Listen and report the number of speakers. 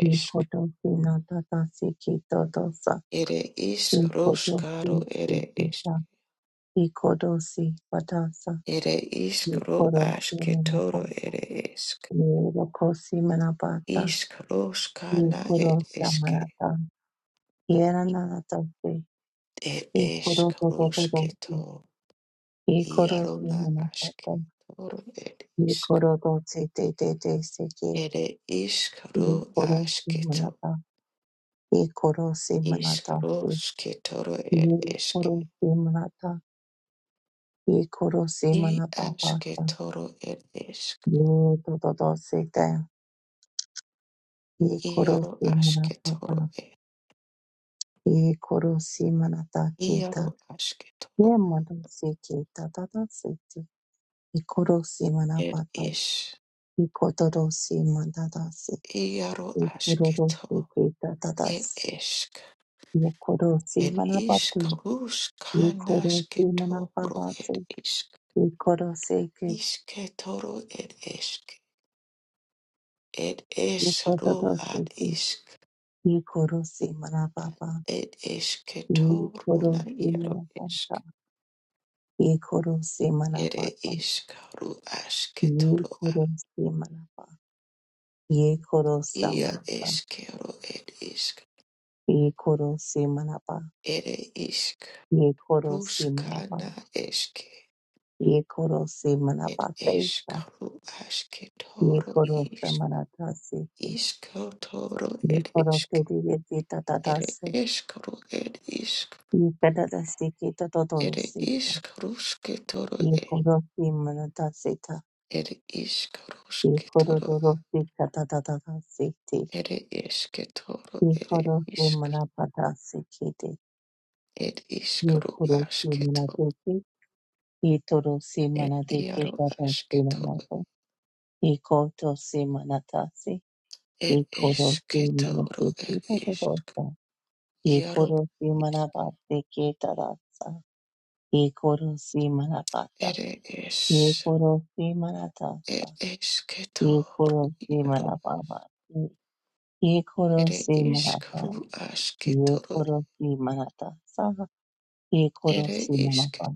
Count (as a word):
two